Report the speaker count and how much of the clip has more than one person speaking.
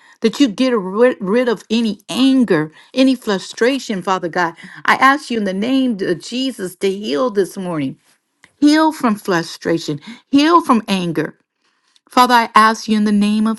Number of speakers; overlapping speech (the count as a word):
one, no overlap